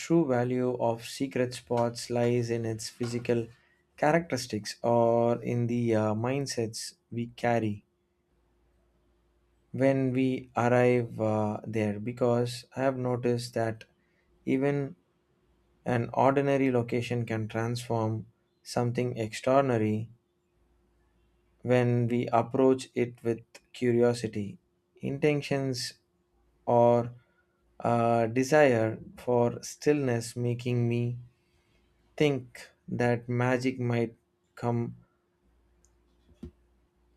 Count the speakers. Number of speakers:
1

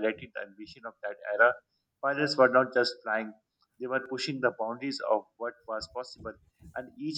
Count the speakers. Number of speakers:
1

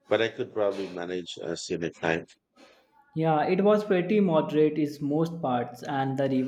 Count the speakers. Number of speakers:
2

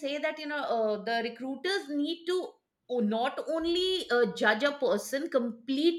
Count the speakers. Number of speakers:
1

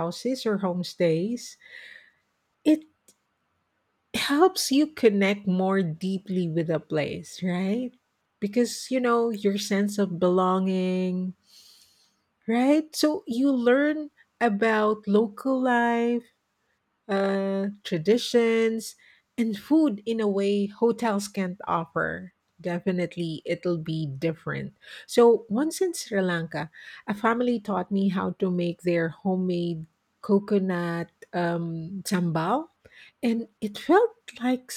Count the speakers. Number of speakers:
1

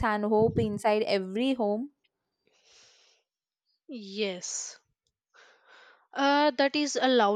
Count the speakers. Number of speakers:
2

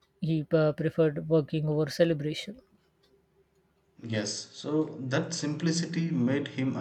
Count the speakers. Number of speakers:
2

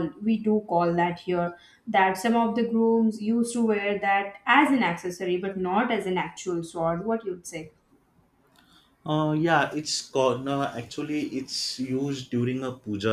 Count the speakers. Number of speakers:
2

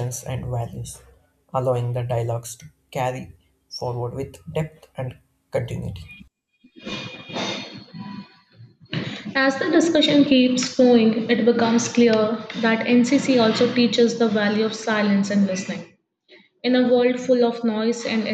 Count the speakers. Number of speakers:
2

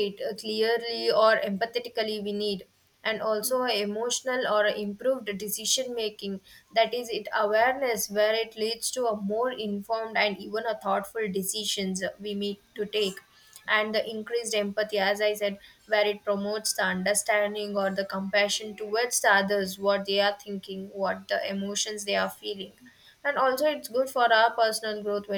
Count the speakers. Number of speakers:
1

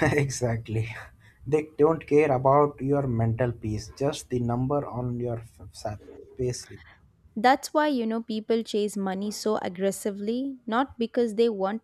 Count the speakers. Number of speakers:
2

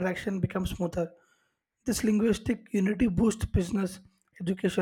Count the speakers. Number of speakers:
1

